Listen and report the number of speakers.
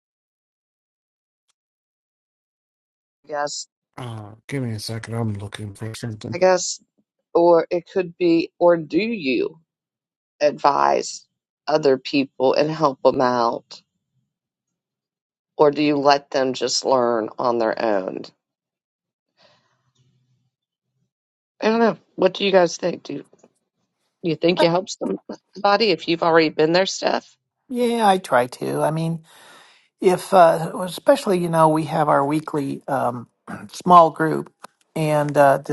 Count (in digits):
3